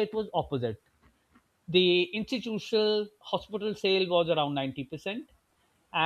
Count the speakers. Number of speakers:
1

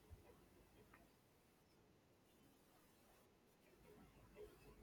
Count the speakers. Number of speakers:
0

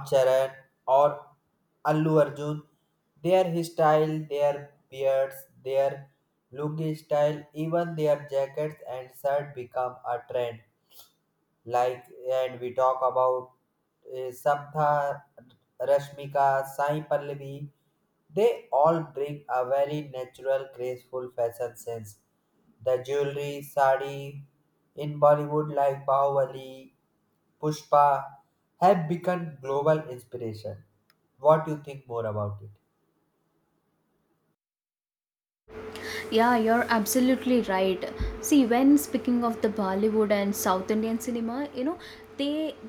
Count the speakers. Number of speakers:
2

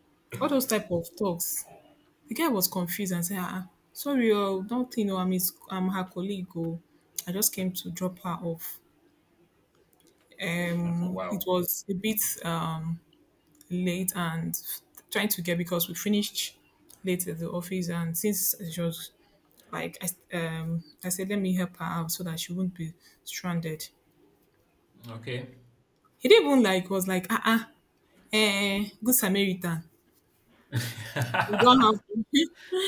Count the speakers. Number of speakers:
2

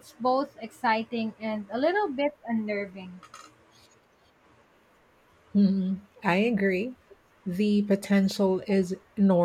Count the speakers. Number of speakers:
2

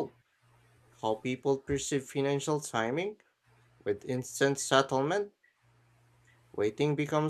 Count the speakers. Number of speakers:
1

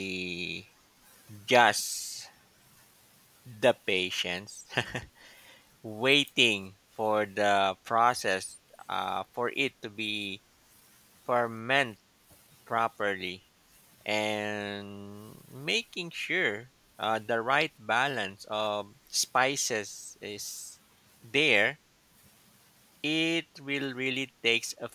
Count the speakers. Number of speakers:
1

